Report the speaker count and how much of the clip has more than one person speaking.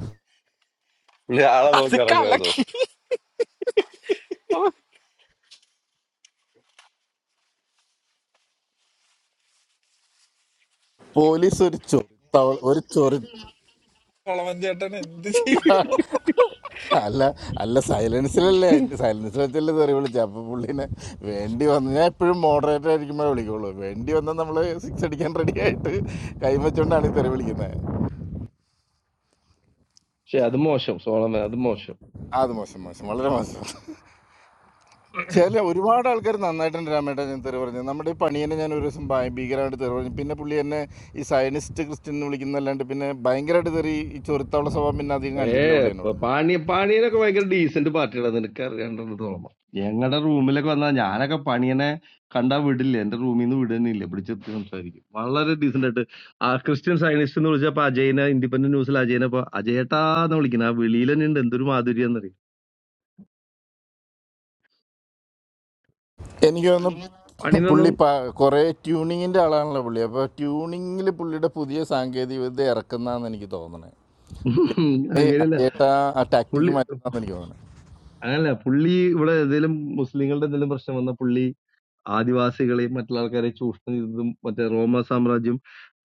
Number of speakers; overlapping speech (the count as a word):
four, about 3%